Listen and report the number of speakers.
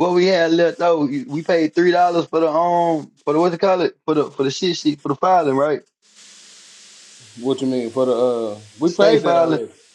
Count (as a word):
two